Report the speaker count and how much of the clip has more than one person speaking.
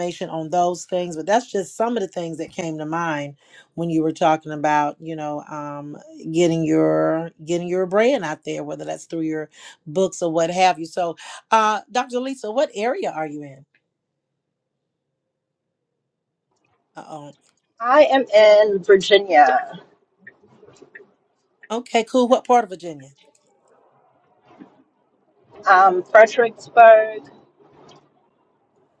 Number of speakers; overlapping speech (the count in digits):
2, no overlap